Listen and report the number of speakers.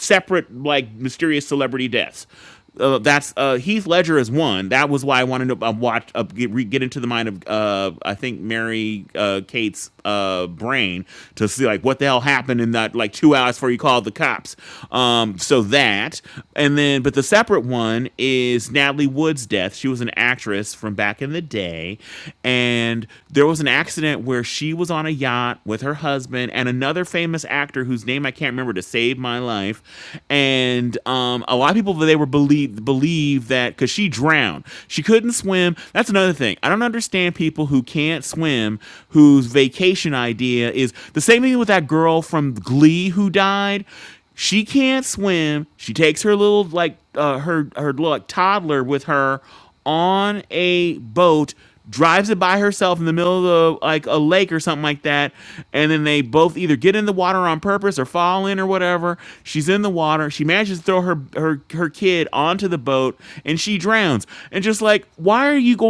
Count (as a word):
one